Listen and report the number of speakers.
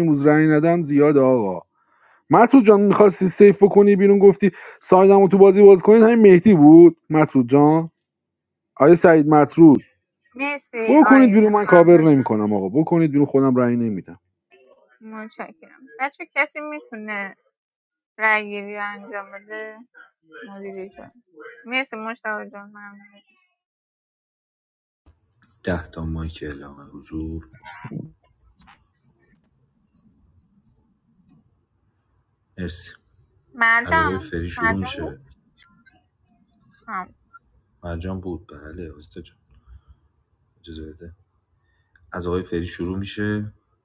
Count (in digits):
3